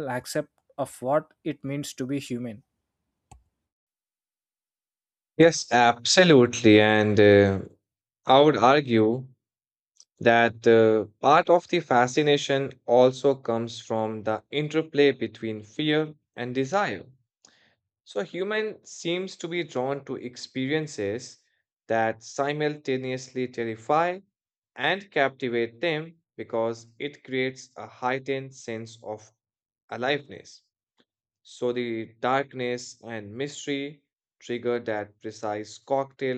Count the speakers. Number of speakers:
two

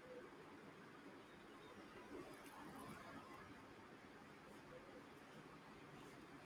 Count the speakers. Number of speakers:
zero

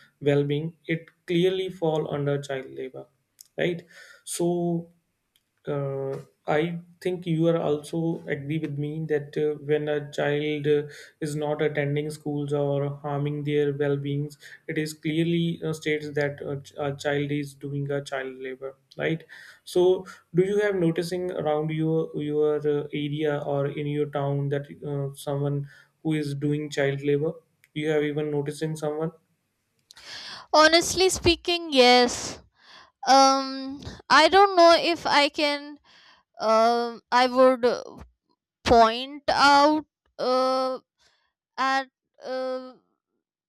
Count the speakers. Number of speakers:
two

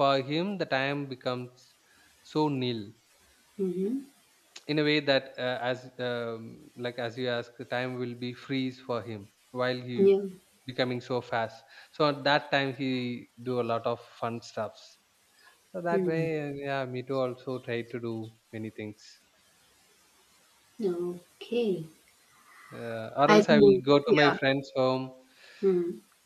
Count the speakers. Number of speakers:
two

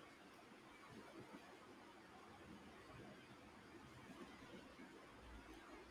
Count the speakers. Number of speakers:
zero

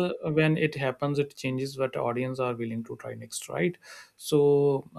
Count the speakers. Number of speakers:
one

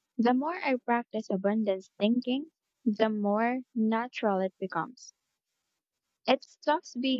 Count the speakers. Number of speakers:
one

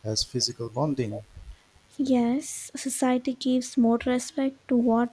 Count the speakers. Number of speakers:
two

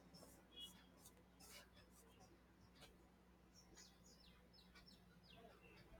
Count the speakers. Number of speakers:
zero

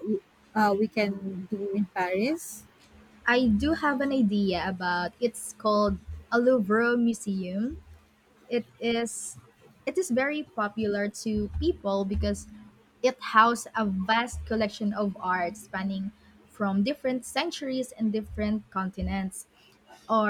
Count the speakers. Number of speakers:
two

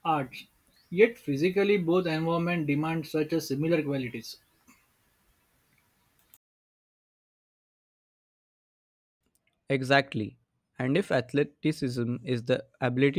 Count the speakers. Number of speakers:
two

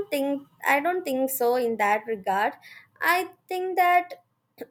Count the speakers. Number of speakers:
one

